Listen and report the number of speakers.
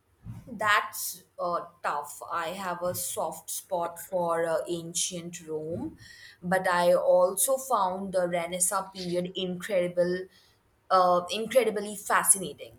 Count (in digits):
1